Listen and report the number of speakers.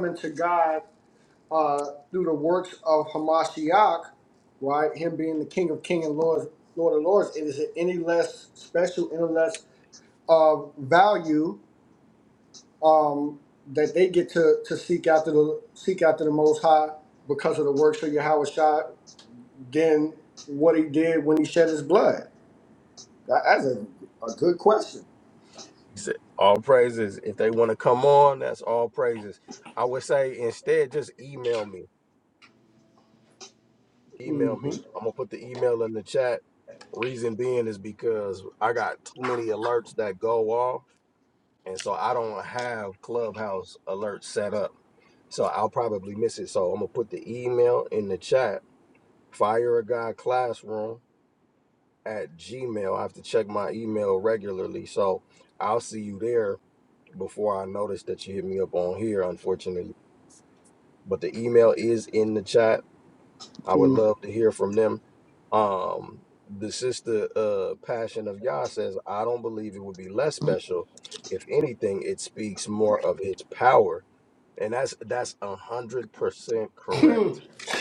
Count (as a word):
two